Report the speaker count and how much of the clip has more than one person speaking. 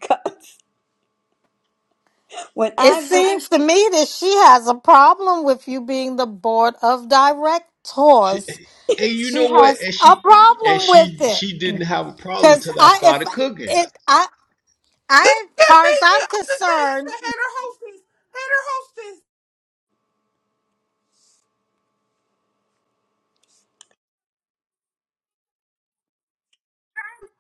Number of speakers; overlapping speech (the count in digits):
4, about 18%